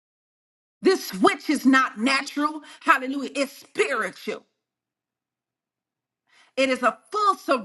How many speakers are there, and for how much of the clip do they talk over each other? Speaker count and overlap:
1, no overlap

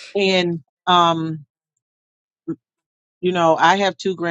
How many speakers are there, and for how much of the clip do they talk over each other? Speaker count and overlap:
1, no overlap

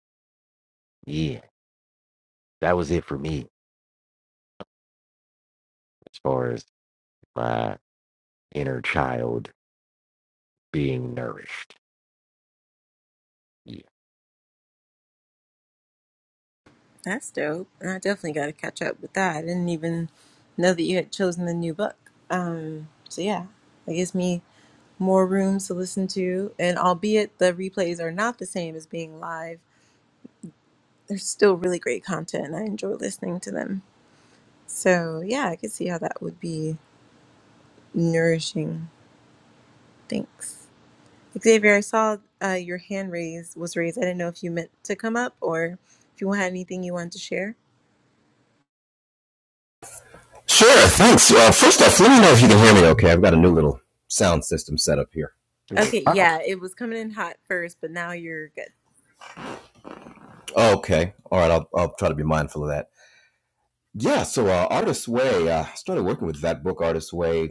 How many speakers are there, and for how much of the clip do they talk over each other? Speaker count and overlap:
3, under 1%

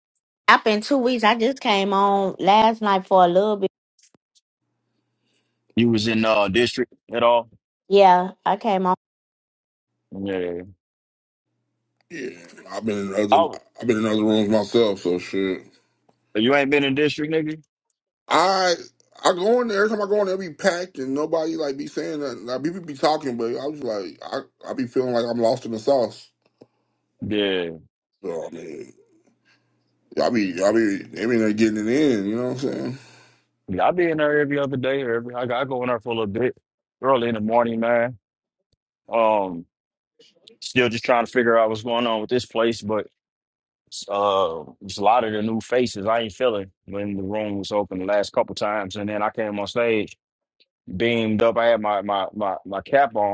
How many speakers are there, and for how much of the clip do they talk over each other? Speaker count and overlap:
3, about 1%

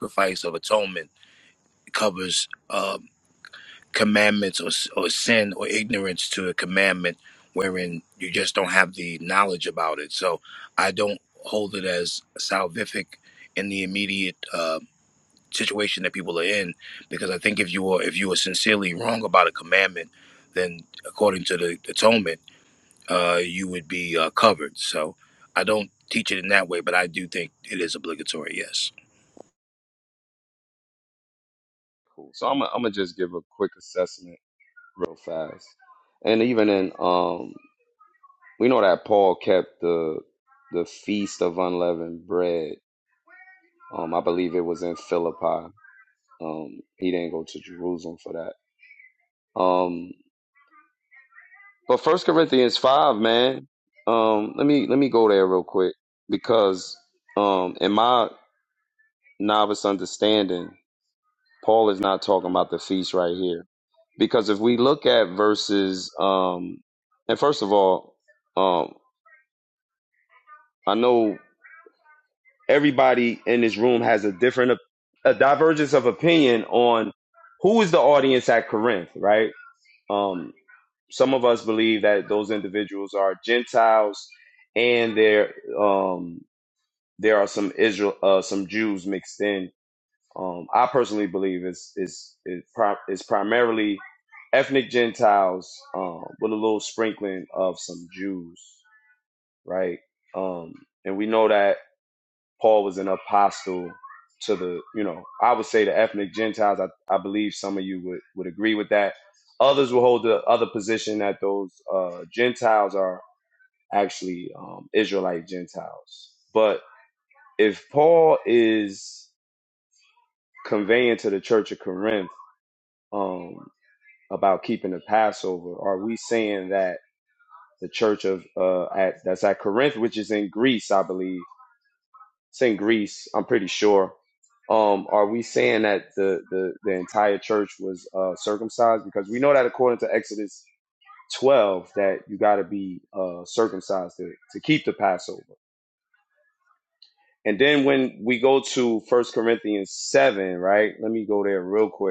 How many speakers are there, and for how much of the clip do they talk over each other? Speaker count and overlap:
2, no overlap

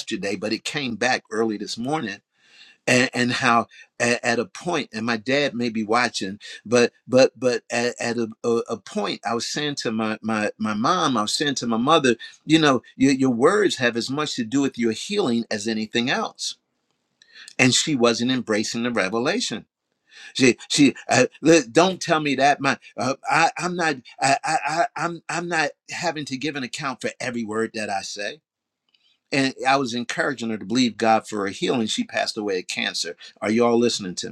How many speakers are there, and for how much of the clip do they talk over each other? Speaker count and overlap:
1, no overlap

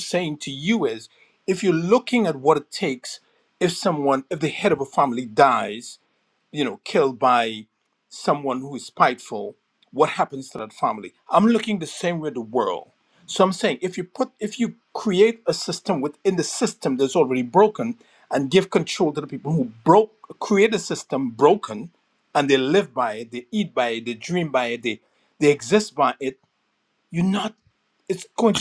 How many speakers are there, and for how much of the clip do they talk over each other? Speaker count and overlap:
1, no overlap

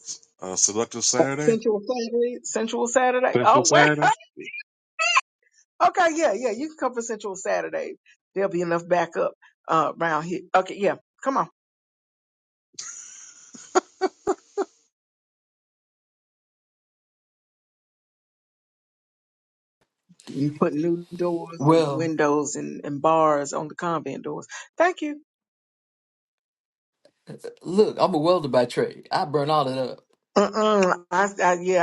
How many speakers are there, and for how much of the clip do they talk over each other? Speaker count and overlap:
3, about 4%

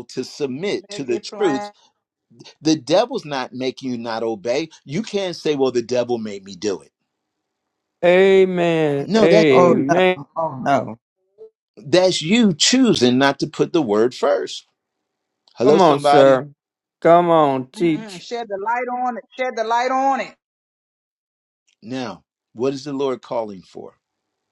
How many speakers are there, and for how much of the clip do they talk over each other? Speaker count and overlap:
4, about 12%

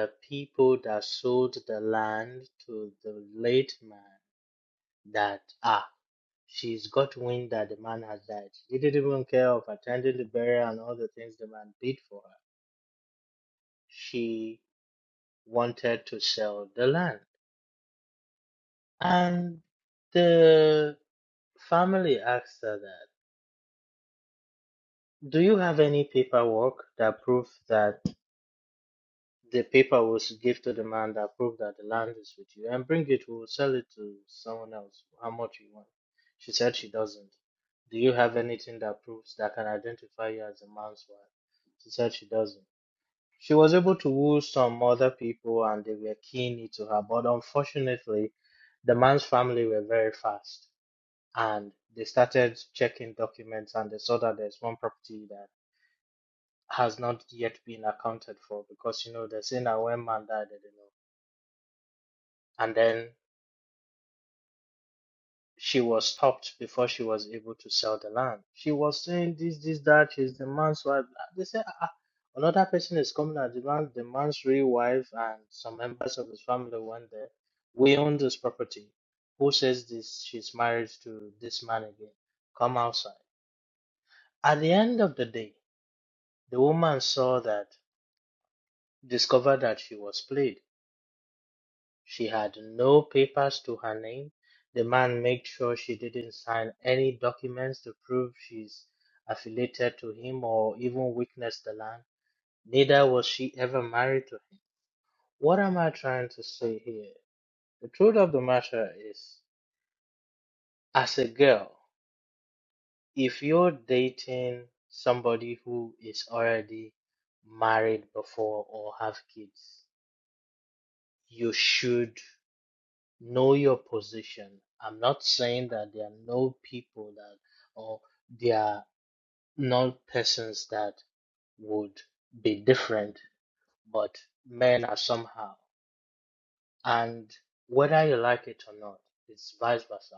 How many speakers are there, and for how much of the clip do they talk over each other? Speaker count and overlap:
1, no overlap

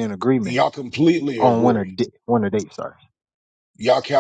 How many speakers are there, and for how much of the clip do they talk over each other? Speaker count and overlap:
2, about 14%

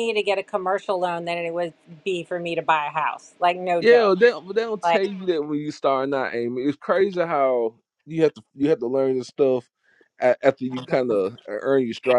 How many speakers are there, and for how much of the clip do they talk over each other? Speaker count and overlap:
2, about 5%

